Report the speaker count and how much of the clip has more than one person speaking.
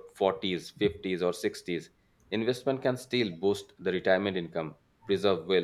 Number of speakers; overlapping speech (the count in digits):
1, no overlap